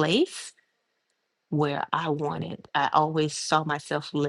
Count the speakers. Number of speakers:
one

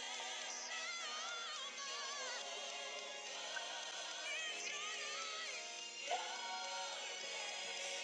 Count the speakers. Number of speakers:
zero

